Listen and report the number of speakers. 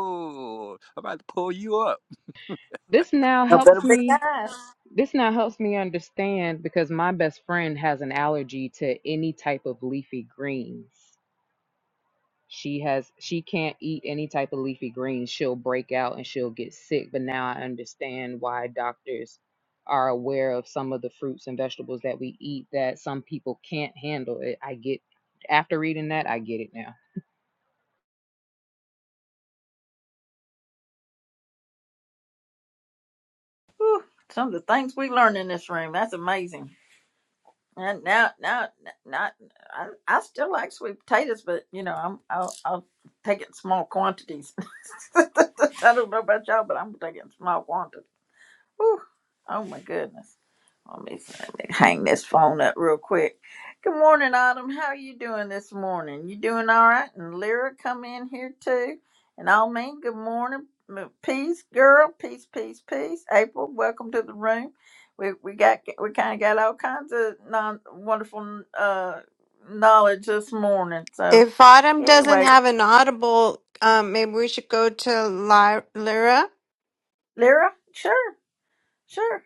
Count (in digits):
4